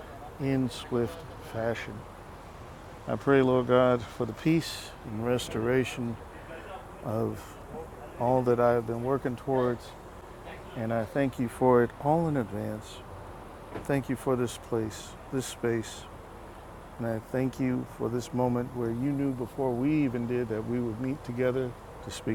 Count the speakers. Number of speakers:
1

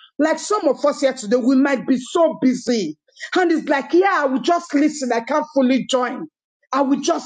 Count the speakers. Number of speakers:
1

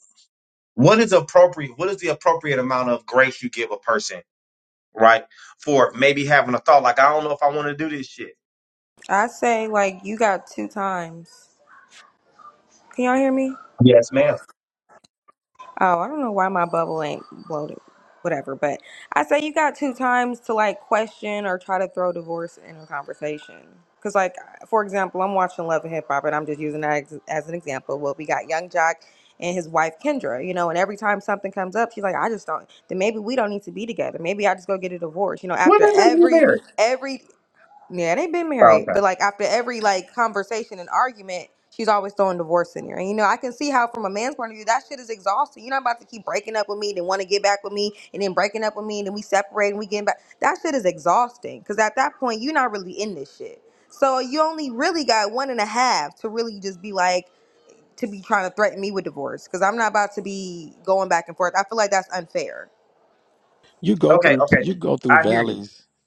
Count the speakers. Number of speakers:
3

